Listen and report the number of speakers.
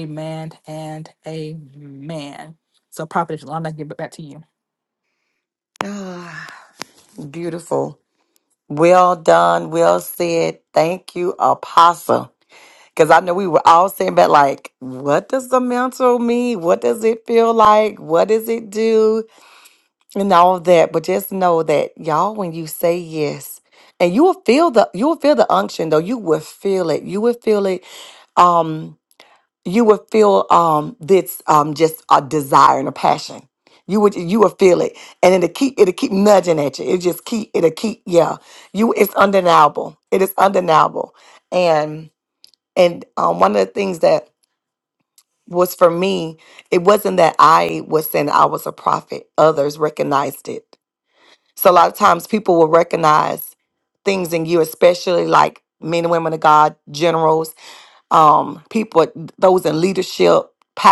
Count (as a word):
two